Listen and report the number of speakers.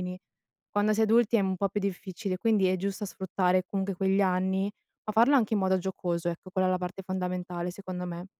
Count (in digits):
1